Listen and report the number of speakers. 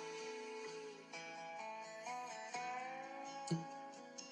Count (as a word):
zero